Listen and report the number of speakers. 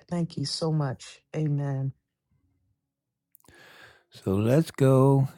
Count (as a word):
two